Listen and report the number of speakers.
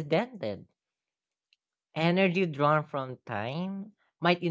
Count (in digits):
1